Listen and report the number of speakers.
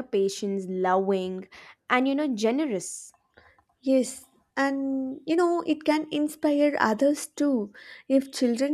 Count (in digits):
2